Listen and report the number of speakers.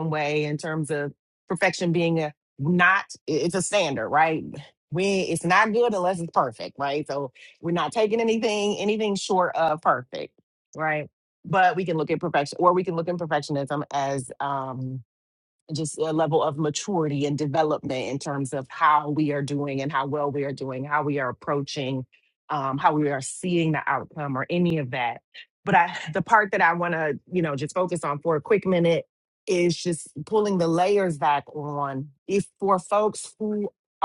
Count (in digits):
1